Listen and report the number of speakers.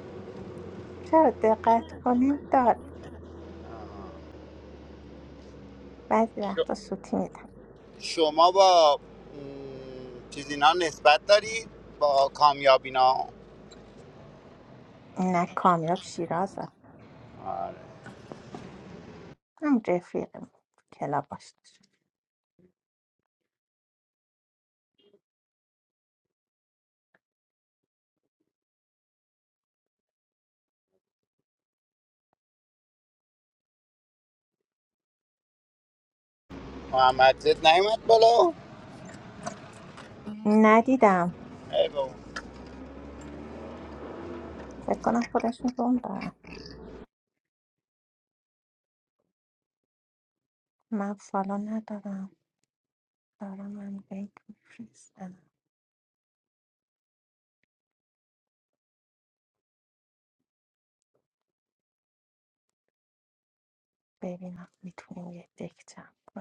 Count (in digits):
2